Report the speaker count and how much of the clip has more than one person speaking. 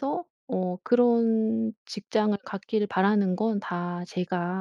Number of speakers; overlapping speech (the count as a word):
one, no overlap